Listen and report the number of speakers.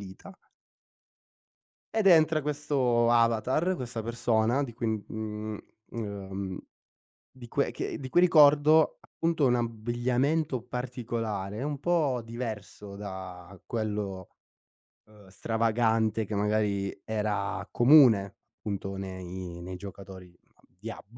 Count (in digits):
1